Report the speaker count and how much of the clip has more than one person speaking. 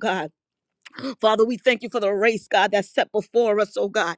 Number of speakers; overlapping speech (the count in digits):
1, no overlap